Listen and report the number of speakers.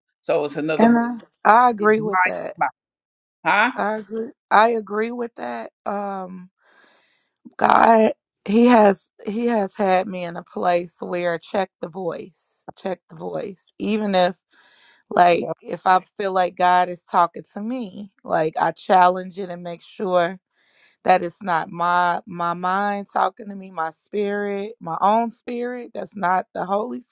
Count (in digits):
2